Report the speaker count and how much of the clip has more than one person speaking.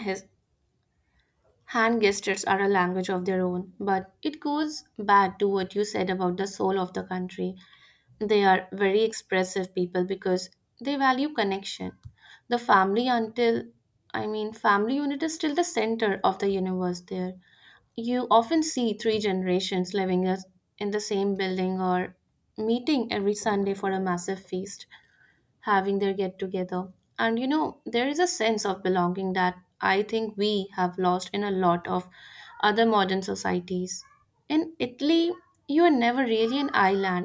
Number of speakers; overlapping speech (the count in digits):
1, no overlap